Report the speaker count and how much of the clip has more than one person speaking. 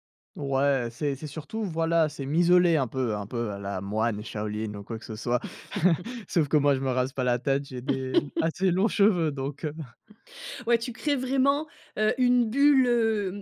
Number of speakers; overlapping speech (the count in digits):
2, no overlap